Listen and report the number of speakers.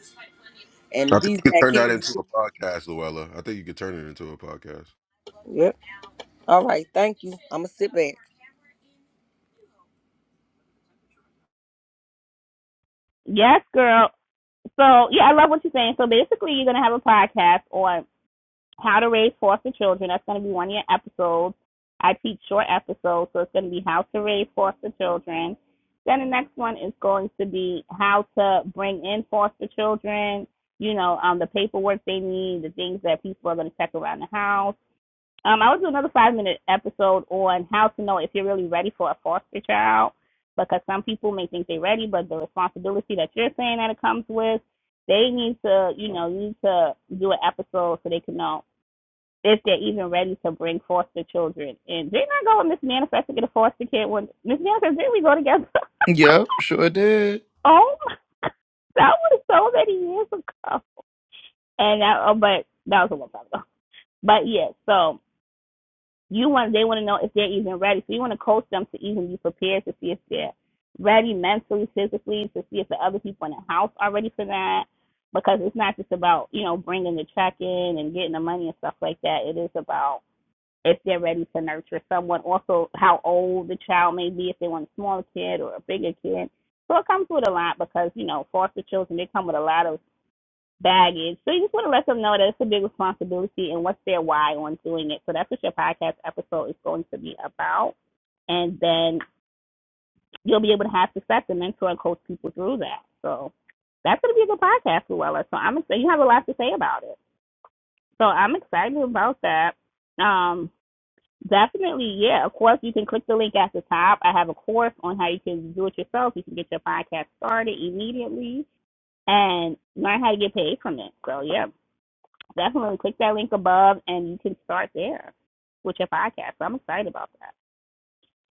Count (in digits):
4